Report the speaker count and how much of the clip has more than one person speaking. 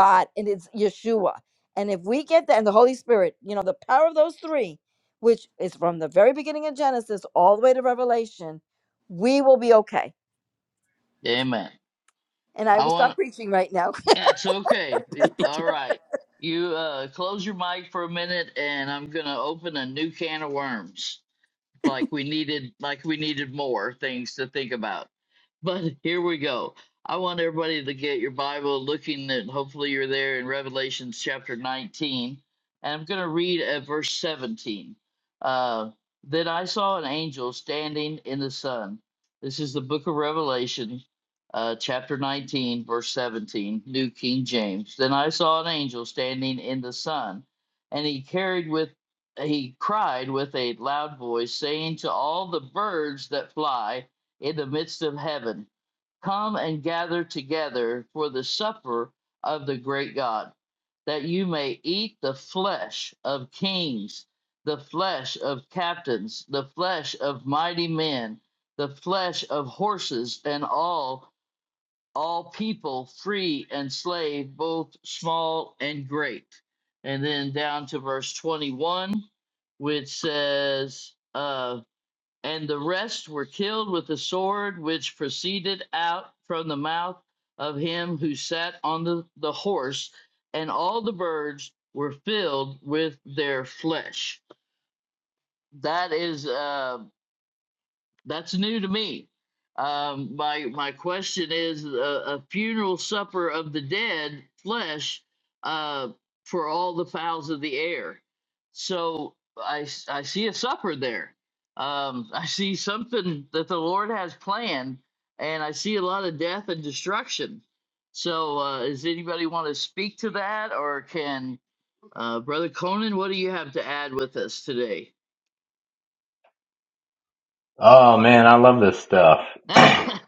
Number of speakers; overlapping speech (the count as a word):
three, under 1%